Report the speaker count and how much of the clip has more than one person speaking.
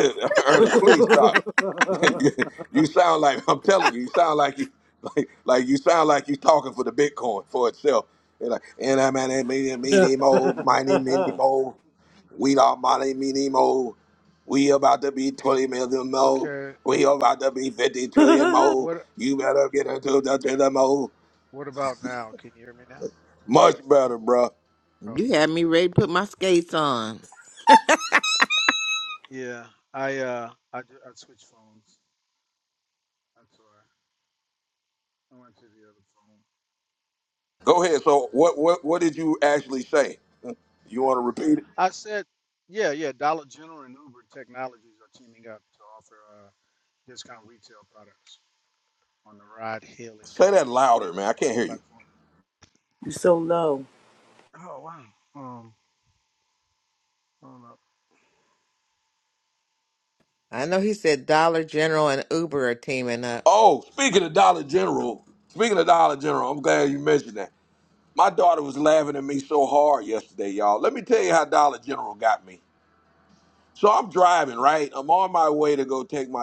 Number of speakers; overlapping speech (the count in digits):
4, about 4%